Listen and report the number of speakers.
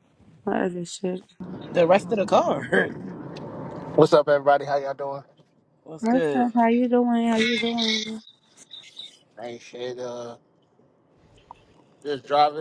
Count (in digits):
3